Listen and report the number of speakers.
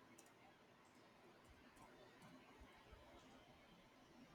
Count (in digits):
0